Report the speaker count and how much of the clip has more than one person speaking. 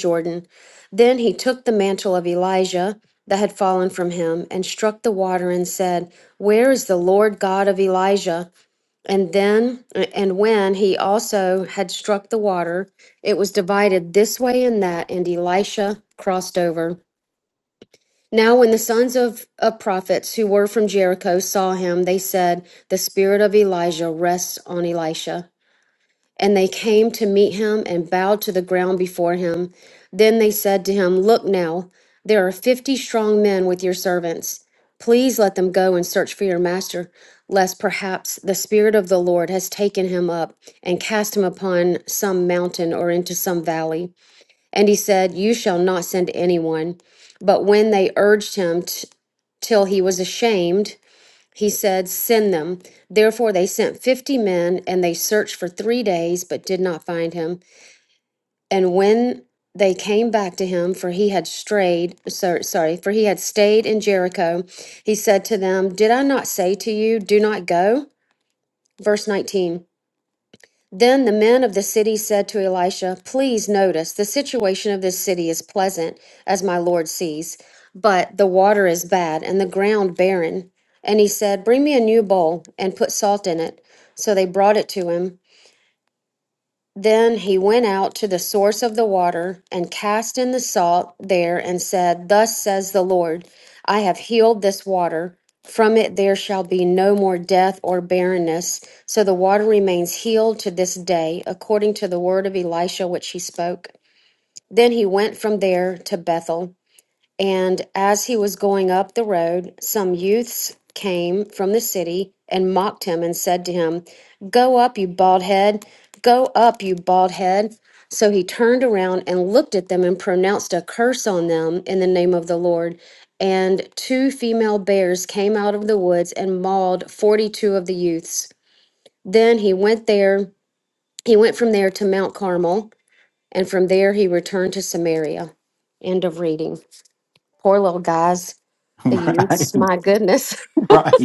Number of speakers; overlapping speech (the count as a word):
two, under 1%